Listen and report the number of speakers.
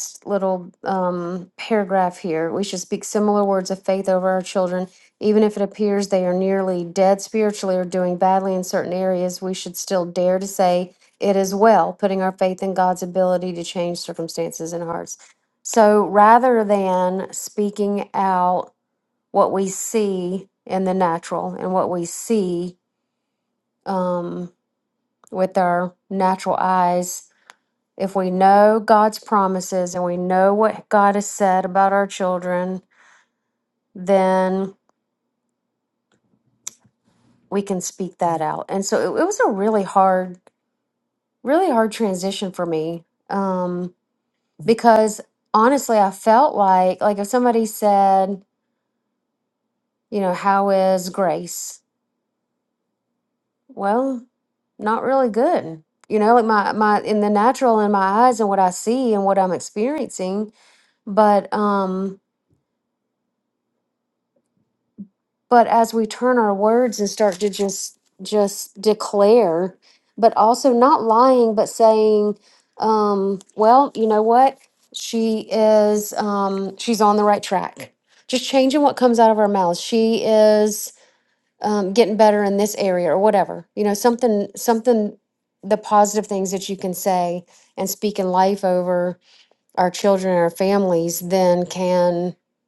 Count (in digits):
1